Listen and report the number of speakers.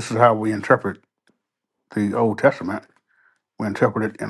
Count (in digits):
1